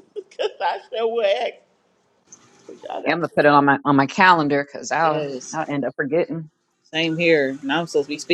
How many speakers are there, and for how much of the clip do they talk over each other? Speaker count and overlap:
three, about 7%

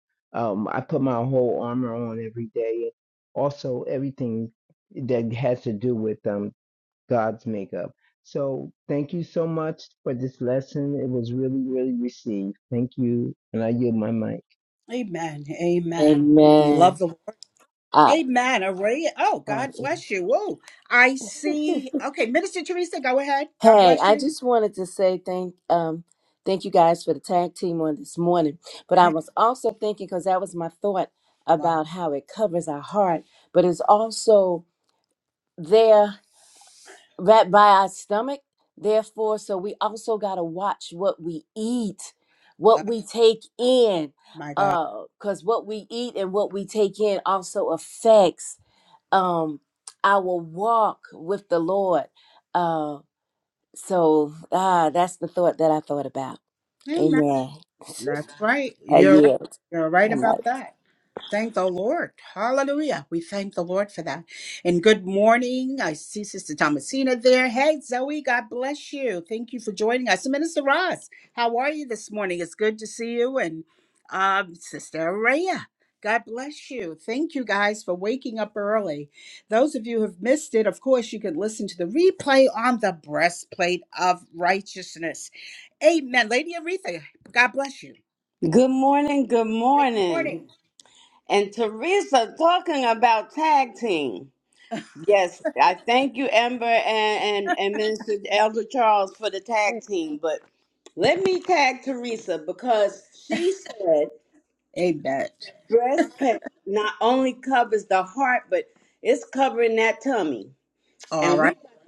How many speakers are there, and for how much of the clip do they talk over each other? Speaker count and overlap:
four, about 4%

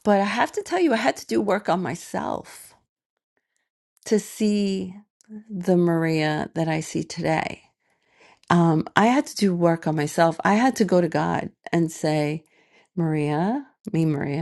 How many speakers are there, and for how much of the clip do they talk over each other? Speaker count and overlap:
one, no overlap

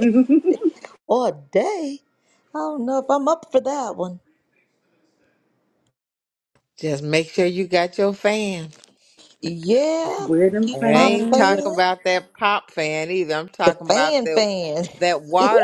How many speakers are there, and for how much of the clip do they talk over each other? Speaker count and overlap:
three, about 14%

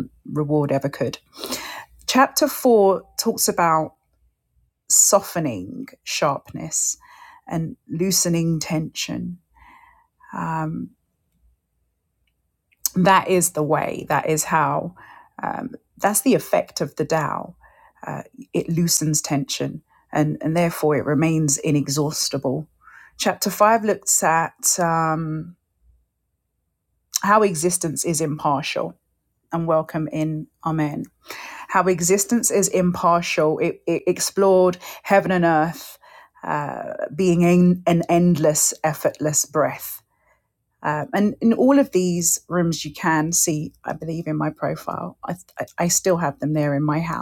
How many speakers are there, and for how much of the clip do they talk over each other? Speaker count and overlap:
one, no overlap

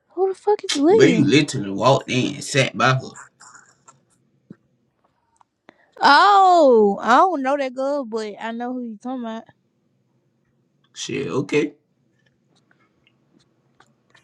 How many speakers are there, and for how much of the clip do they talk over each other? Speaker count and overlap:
two, about 3%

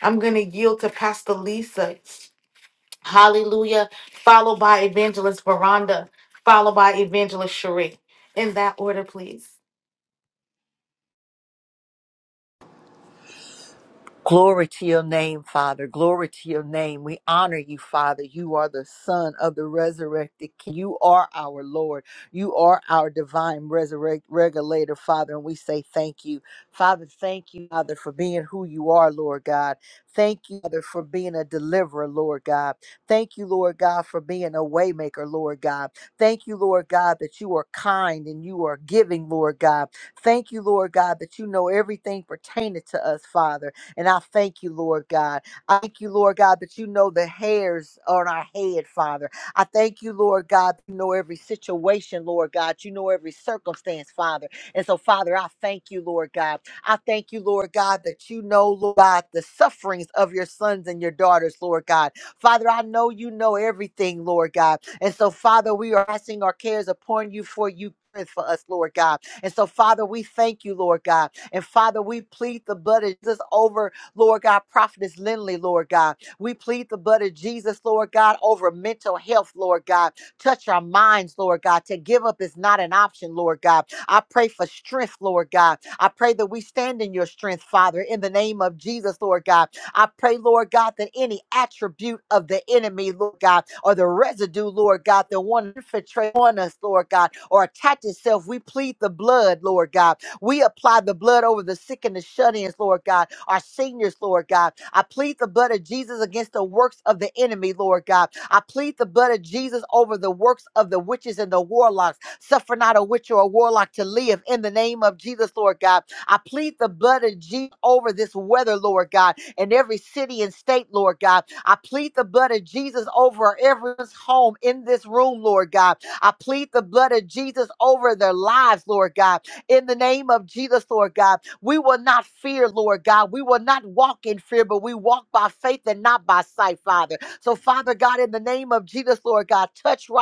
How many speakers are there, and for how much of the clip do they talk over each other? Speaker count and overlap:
two, no overlap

